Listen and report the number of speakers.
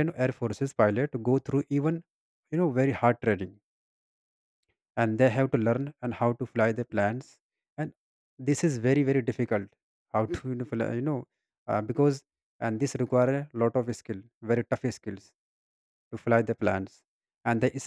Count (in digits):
1